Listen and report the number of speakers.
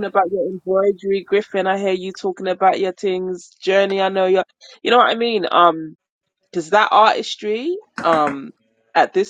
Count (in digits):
1